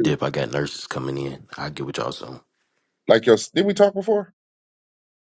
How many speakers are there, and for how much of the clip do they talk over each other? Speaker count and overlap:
2, about 3%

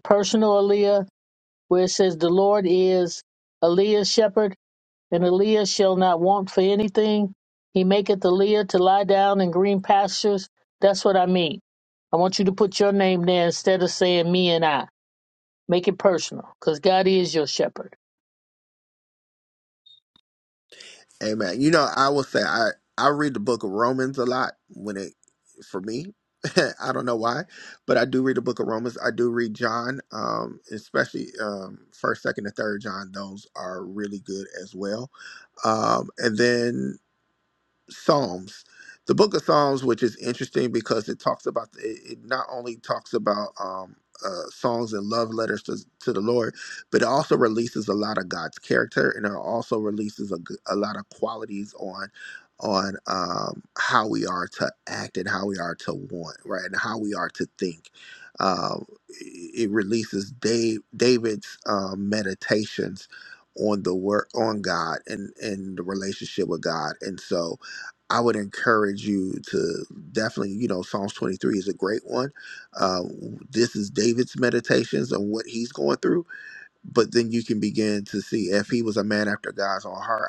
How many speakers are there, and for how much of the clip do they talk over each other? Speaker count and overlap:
2, no overlap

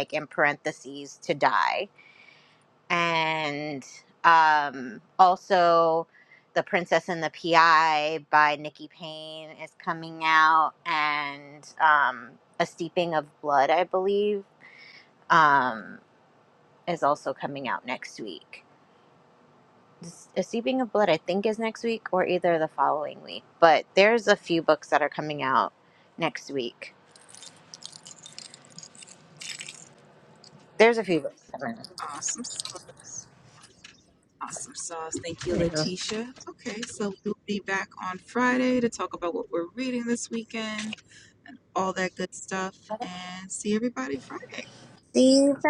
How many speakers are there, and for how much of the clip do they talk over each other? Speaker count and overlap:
2, about 1%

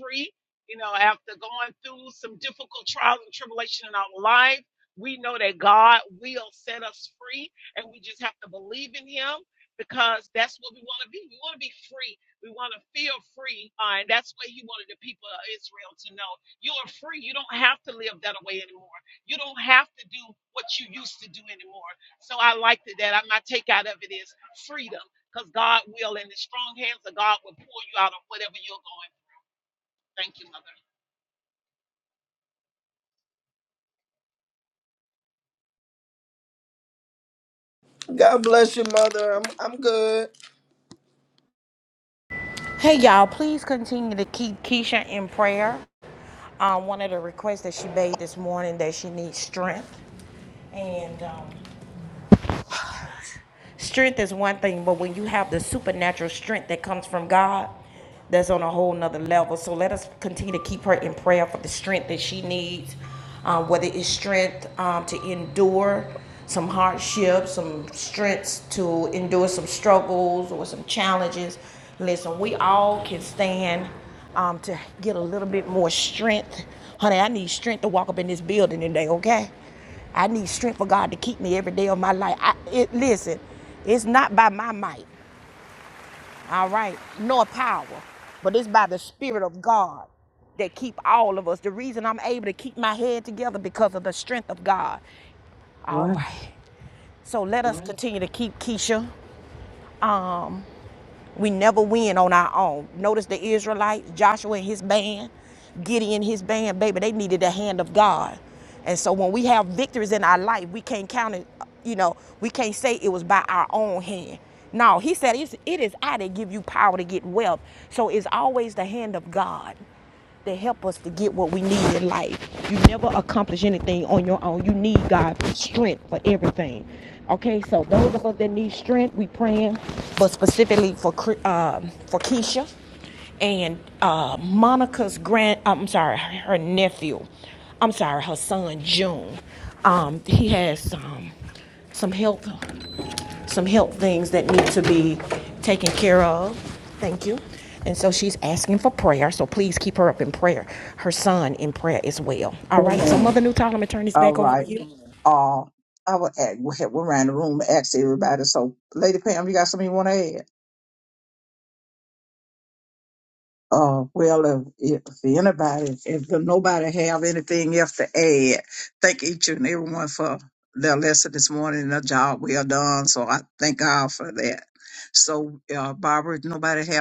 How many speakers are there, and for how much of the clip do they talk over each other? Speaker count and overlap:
4, about 1%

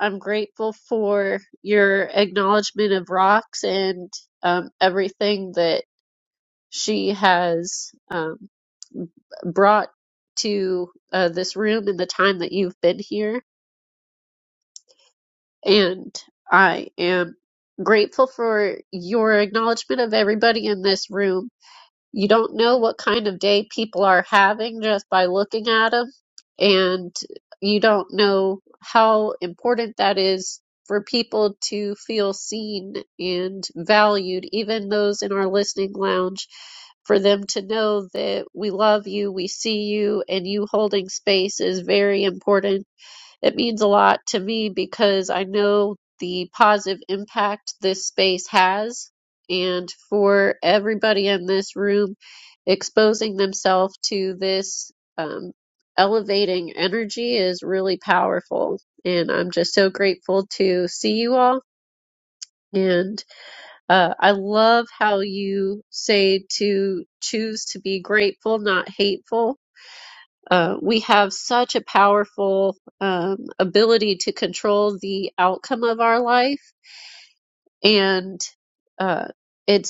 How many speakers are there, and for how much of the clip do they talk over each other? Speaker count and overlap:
1, no overlap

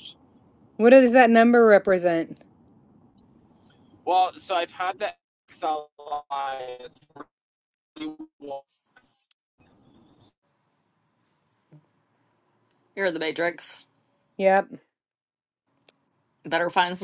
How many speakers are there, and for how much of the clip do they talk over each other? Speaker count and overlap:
3, no overlap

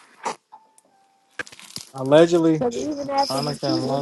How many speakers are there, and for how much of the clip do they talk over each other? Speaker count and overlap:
2, about 18%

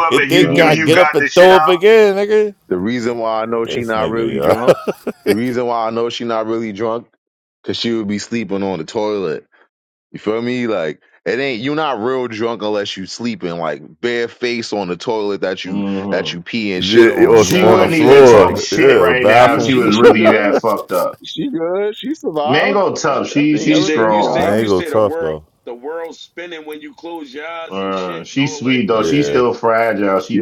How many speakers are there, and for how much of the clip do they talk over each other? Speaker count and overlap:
4, about 40%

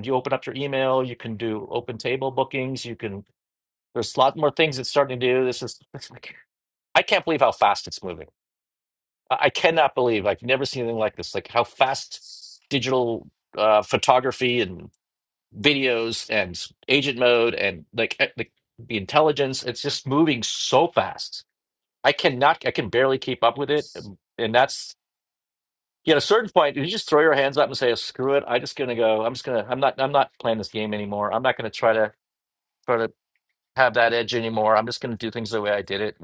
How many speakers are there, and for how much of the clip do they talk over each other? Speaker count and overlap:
1, no overlap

